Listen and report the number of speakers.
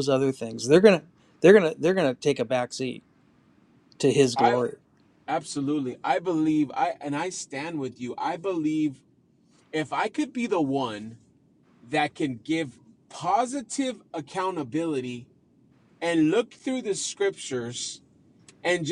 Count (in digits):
2